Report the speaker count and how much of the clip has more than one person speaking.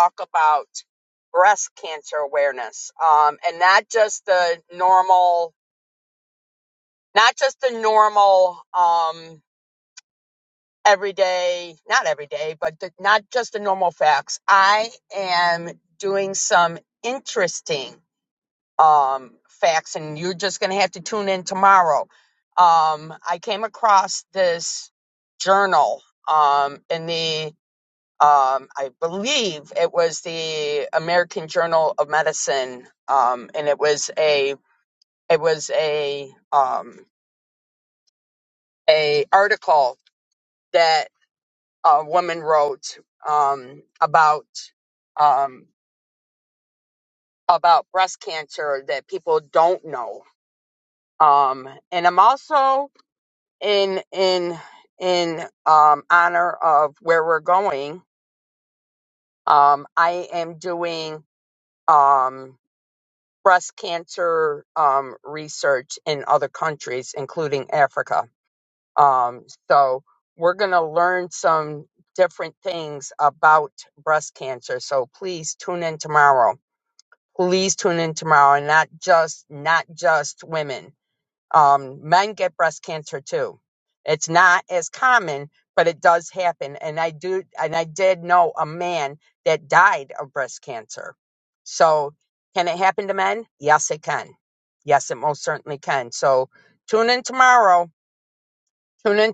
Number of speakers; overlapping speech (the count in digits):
1, no overlap